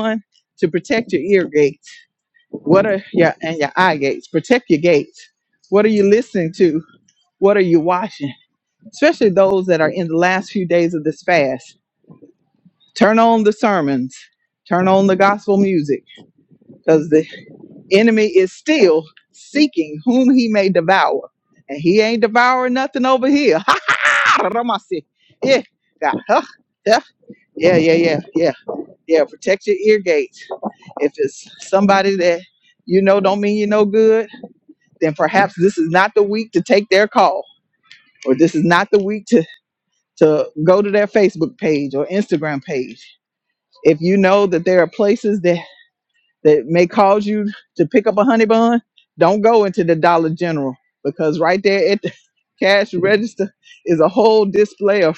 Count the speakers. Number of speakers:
1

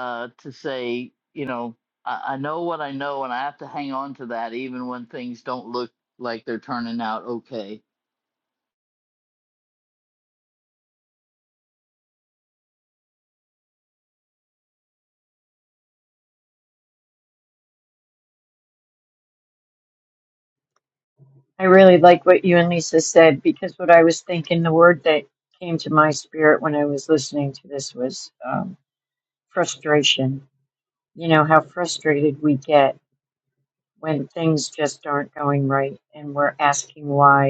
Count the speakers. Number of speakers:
2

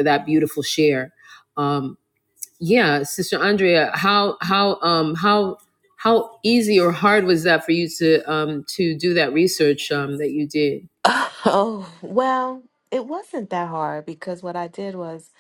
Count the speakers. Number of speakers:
2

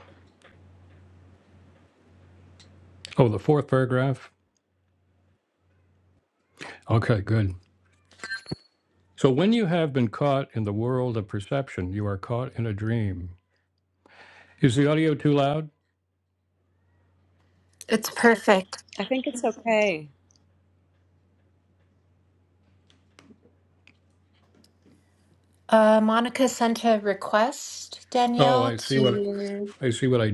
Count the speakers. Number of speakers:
3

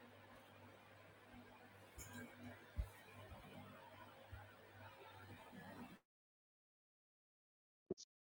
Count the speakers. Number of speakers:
0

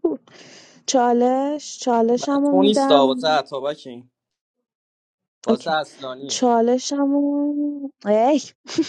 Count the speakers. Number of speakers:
2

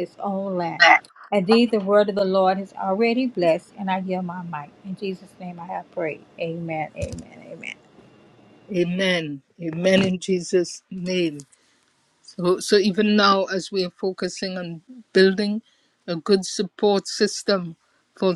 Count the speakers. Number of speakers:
2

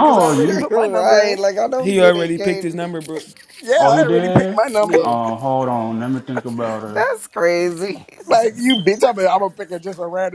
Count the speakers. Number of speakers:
4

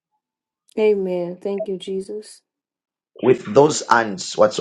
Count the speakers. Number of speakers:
2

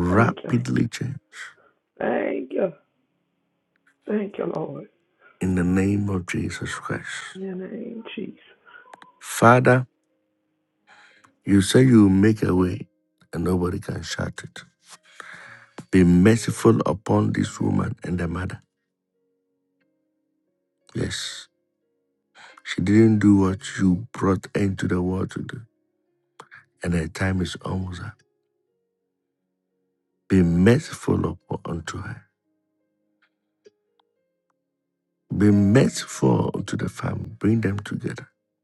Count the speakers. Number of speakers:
2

